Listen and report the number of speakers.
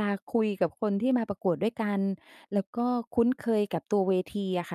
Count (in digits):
1